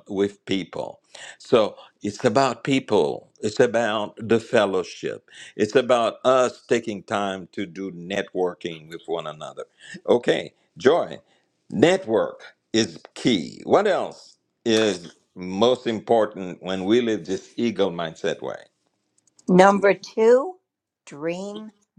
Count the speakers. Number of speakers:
2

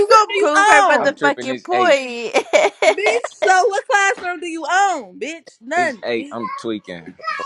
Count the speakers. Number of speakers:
3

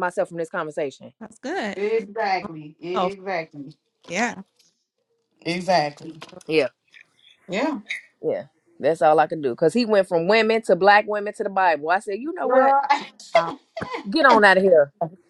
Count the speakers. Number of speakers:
3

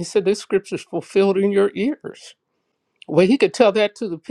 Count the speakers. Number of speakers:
1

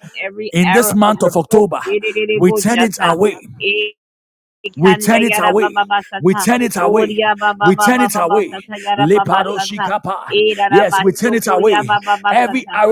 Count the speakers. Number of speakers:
2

